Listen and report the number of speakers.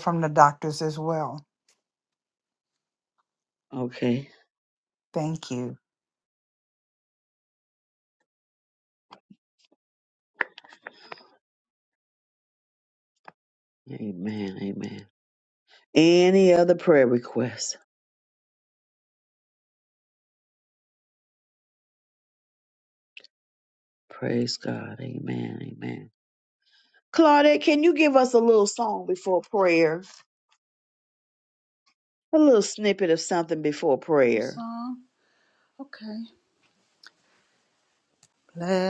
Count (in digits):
3